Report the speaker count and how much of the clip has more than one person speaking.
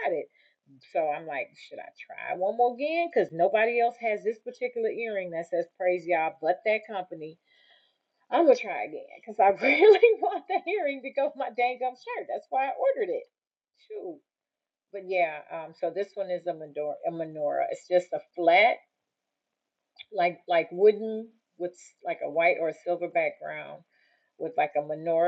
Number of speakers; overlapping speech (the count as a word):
one, no overlap